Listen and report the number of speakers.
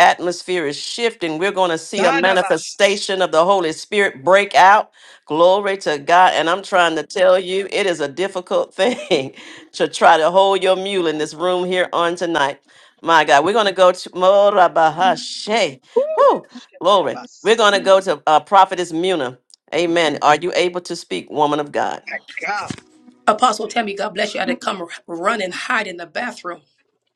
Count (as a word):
three